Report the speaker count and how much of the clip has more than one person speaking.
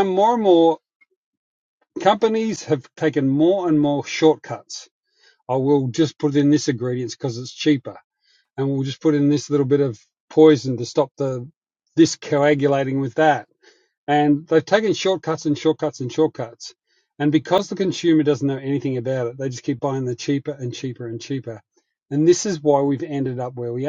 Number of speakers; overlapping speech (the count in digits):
1, no overlap